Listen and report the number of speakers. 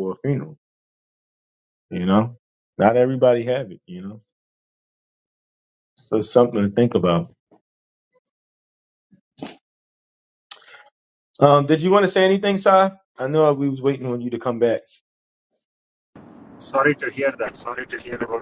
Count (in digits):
2